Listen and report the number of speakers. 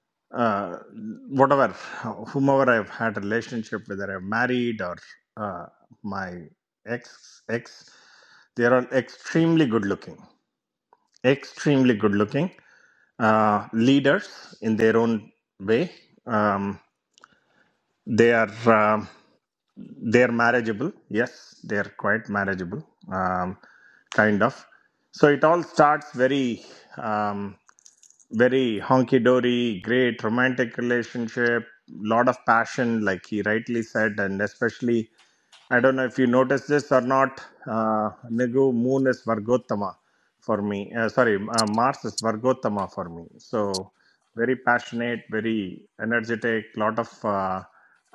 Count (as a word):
one